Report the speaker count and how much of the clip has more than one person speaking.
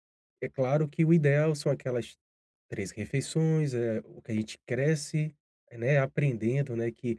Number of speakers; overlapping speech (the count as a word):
one, no overlap